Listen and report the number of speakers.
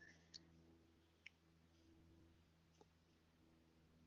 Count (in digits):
0